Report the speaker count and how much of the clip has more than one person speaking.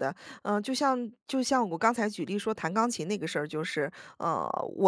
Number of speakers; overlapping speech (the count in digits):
1, no overlap